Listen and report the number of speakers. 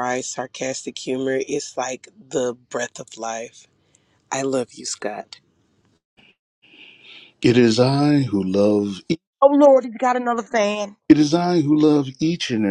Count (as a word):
three